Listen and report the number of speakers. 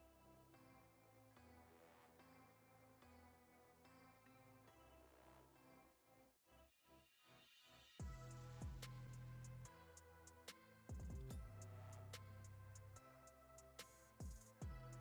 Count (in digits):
0